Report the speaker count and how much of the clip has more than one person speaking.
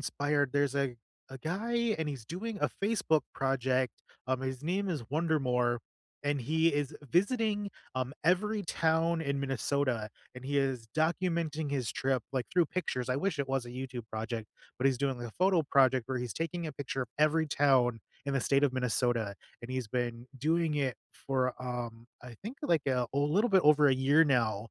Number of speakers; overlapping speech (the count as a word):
one, no overlap